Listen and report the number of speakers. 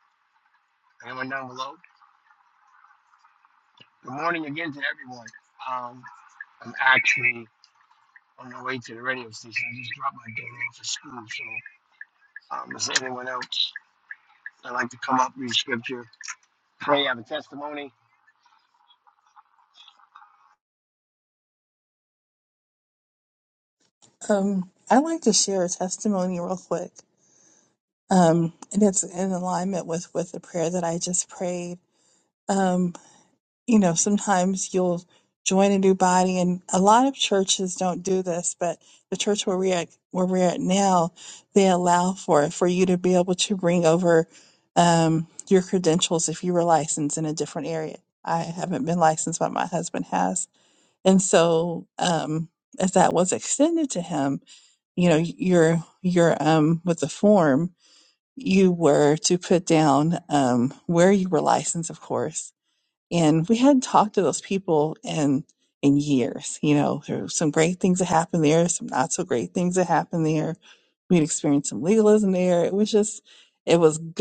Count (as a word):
two